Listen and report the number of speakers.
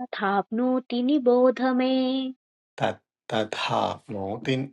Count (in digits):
2